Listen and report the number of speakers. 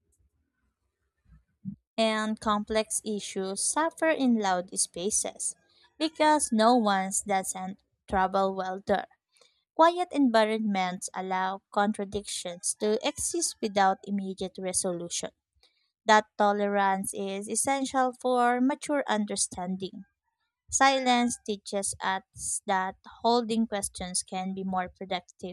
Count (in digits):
1